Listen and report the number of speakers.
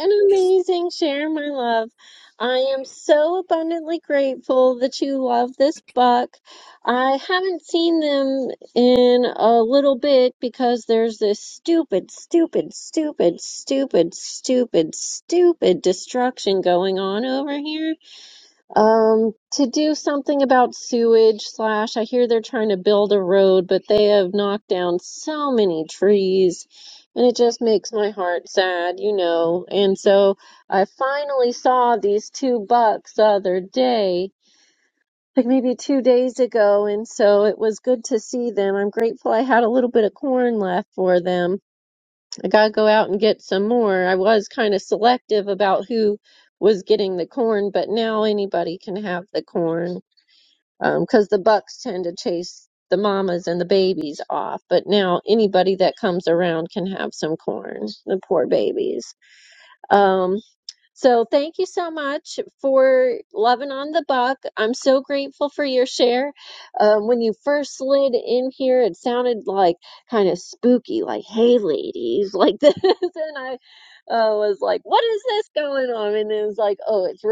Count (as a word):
one